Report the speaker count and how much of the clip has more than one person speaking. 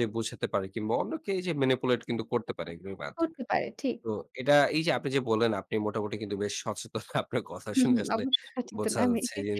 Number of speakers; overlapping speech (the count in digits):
2, about 13%